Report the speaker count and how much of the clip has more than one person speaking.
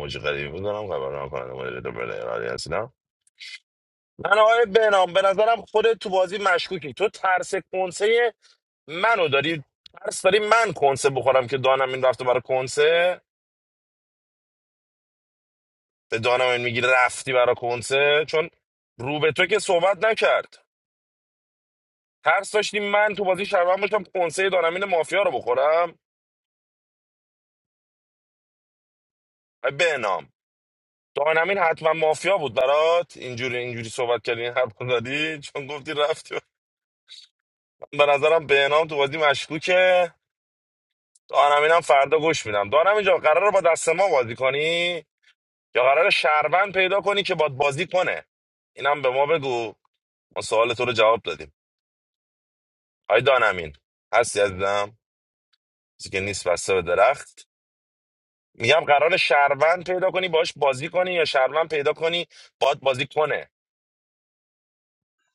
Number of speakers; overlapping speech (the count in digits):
1, no overlap